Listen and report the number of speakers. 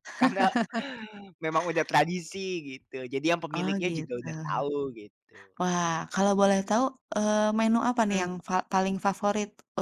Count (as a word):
two